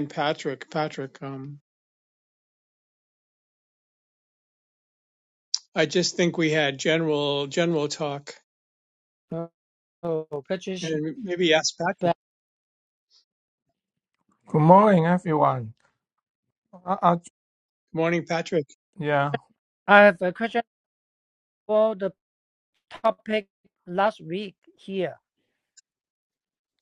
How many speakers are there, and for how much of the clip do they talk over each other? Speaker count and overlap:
3, about 1%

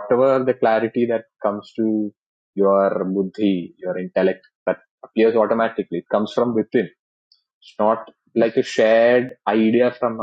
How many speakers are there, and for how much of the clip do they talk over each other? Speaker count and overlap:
1, no overlap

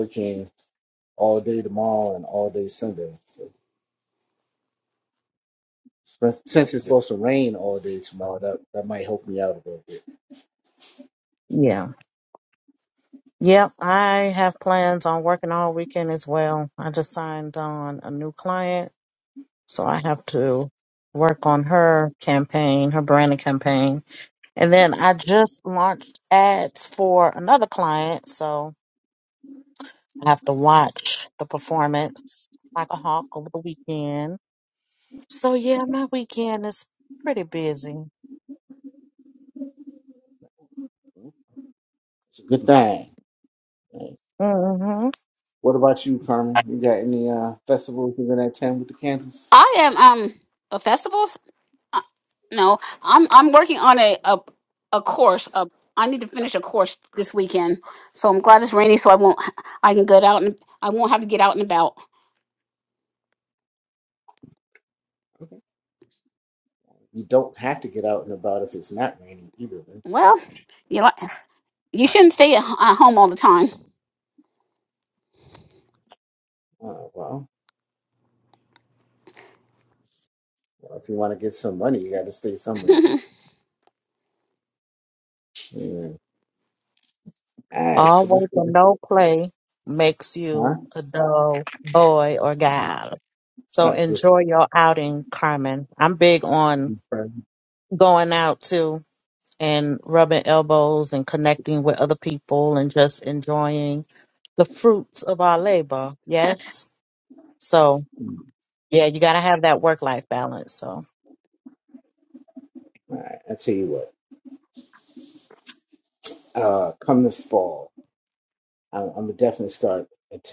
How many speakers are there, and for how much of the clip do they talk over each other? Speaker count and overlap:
3, about 1%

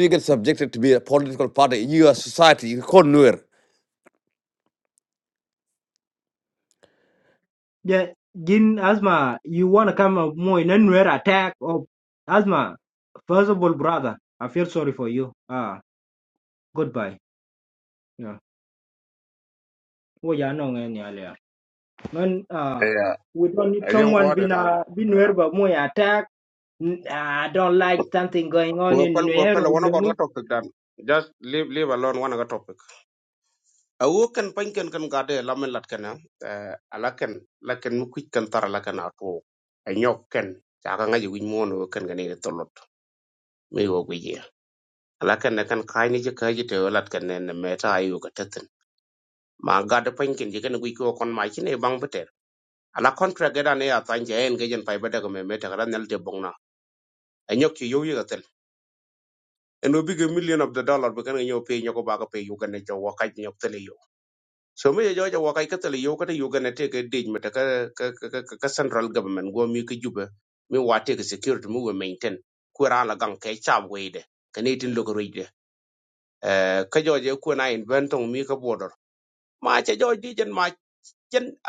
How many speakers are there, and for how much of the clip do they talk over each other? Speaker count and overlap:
3, about 3%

